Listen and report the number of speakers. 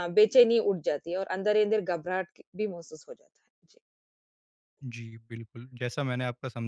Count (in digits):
2